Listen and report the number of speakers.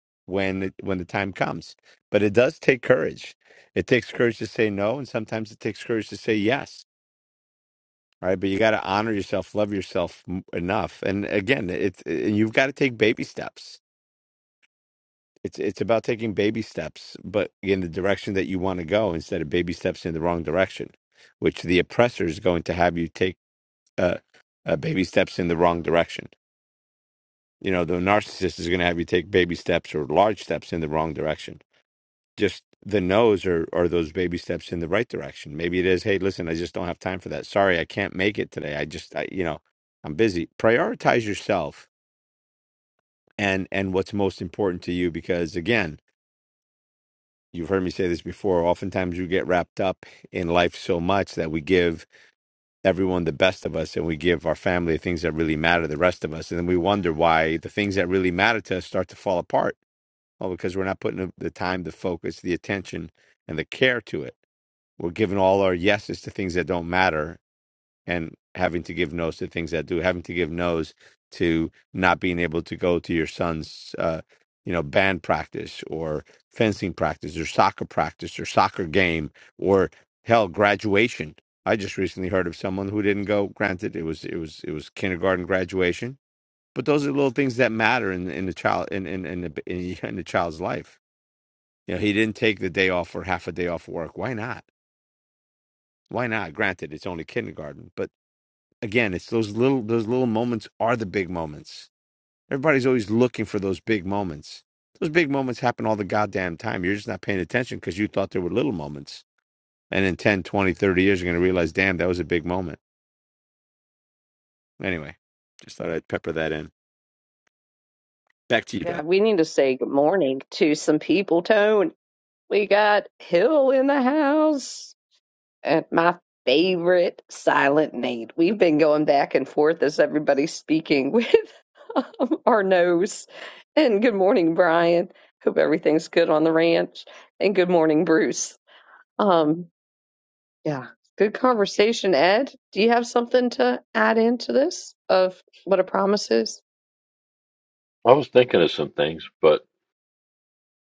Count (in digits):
3